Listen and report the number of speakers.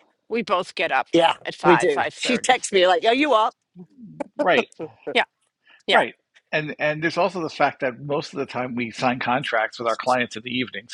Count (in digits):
3